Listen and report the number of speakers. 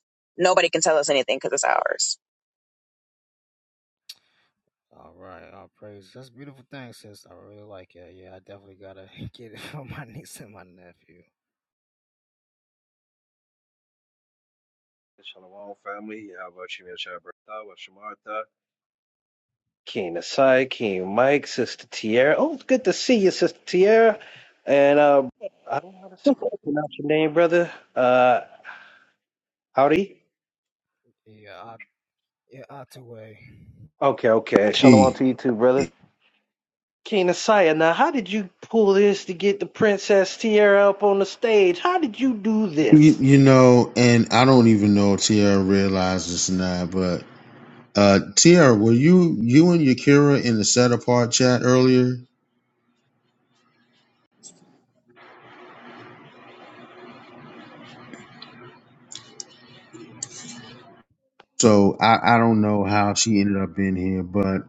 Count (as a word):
four